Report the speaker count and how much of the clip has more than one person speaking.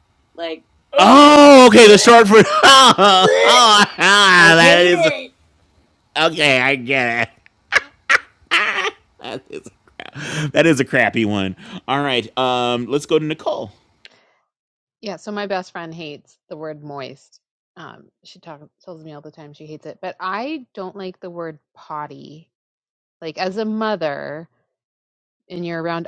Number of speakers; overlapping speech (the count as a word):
three, about 8%